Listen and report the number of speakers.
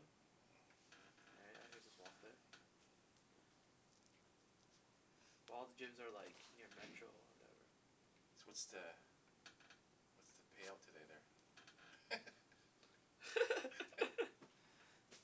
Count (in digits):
2